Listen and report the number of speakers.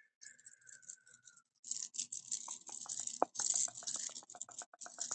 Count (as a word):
zero